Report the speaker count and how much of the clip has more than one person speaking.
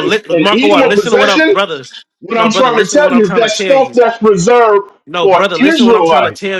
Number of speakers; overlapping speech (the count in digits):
2, about 66%